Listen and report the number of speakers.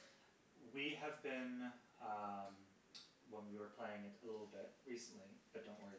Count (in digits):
1